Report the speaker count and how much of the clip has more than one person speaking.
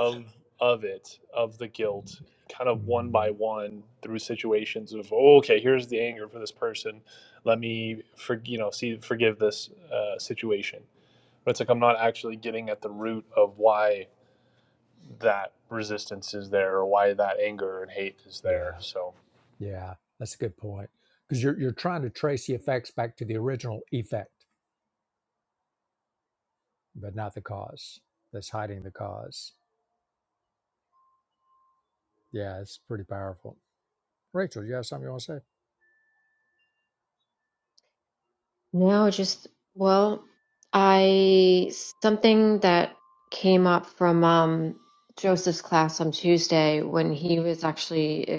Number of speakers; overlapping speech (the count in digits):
3, about 1%